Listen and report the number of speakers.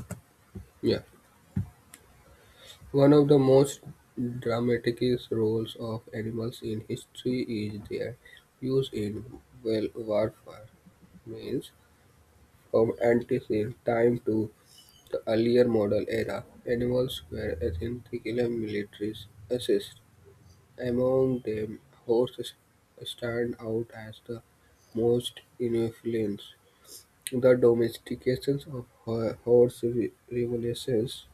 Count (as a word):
one